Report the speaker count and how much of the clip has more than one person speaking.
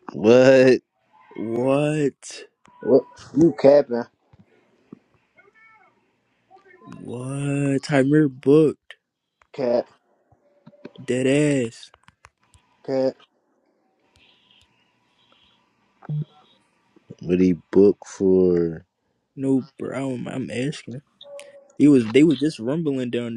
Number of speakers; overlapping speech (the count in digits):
3, no overlap